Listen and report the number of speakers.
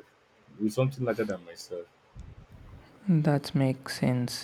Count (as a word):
two